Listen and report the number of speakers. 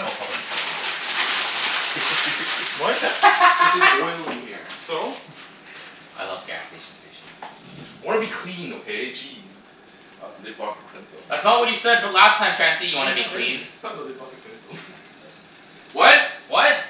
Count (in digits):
3